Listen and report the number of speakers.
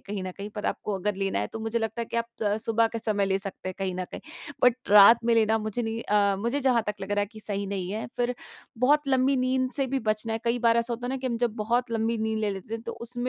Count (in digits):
1